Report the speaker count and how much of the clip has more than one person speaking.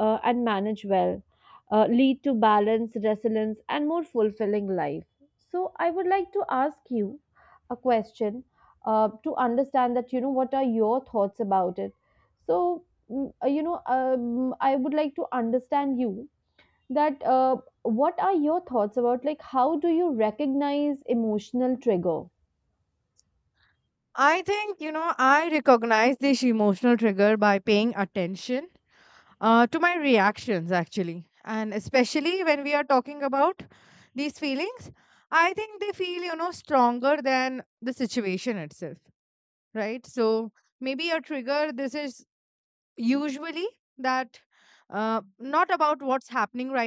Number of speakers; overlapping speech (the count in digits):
2, no overlap